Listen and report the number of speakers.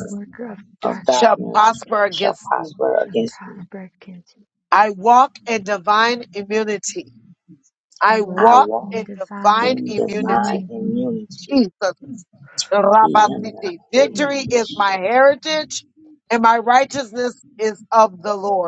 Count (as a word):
three